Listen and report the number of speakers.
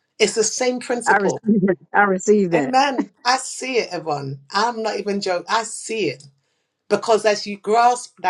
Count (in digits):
2